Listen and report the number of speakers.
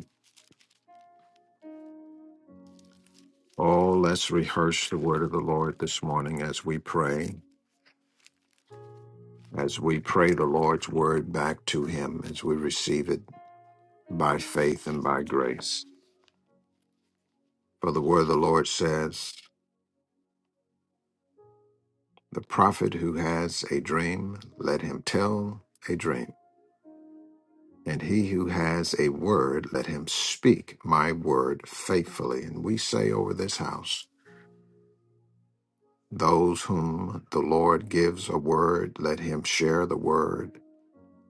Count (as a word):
one